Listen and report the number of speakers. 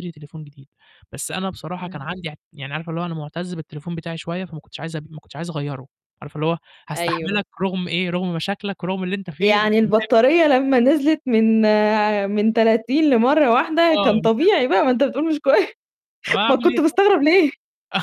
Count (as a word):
two